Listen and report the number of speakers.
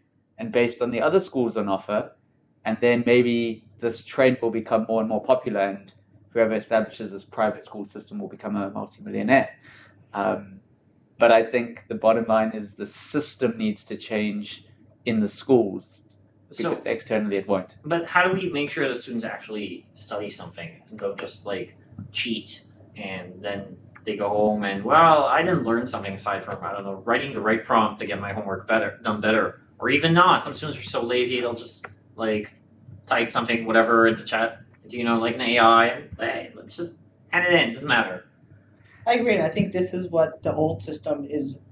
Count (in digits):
3